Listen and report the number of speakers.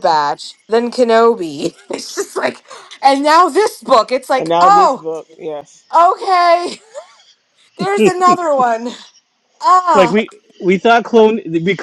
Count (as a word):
three